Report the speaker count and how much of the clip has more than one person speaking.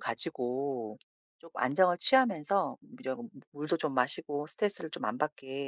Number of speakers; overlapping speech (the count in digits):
1, no overlap